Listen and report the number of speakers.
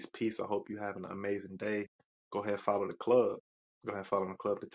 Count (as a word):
one